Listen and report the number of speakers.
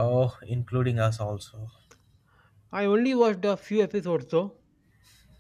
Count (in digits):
2